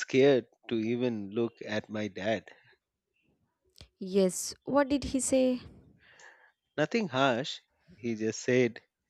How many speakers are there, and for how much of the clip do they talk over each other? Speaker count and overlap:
2, no overlap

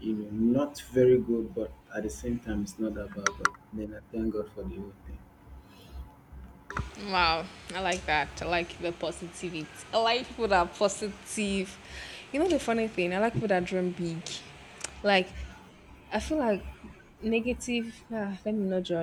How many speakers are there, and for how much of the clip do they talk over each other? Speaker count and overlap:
2, no overlap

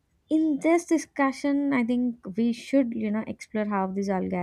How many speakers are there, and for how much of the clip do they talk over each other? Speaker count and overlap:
1, no overlap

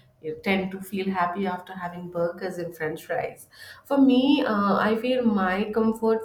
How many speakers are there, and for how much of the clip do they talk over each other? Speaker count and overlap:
1, no overlap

